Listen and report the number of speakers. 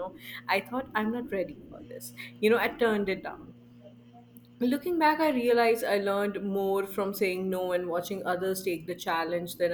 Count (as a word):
one